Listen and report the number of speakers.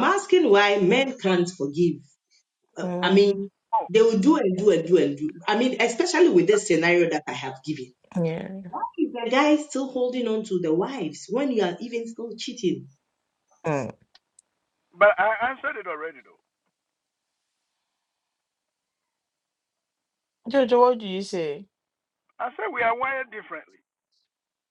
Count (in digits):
3